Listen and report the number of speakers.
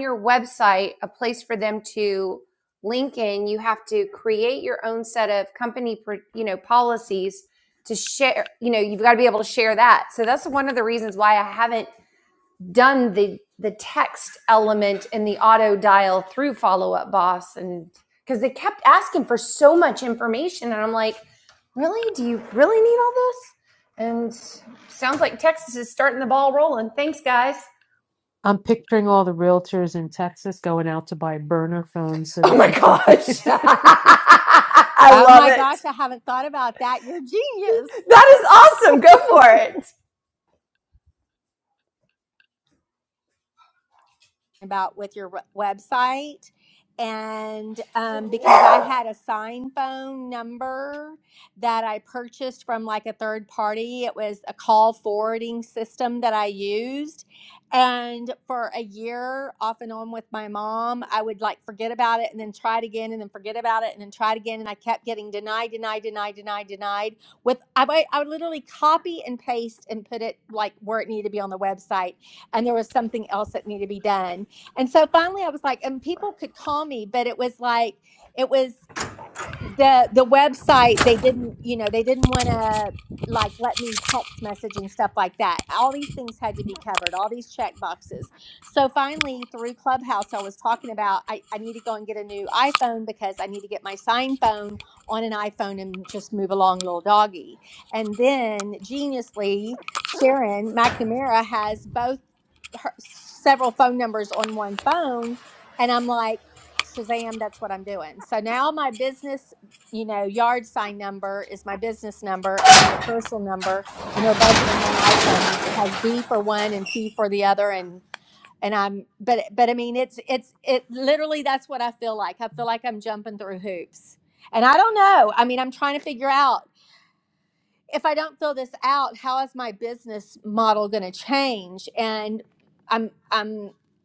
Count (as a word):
three